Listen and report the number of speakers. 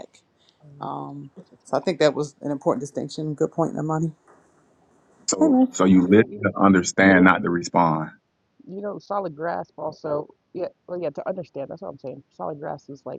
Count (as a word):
three